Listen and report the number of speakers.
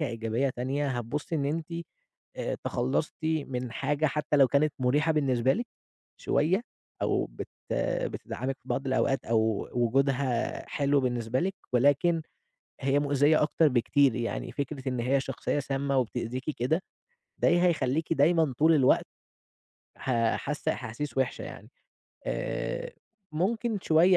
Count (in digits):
1